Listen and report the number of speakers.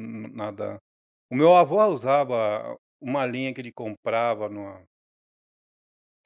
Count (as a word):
one